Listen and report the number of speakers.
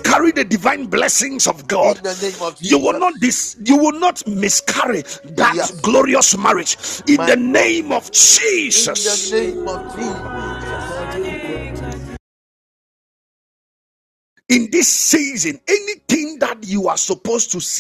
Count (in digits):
2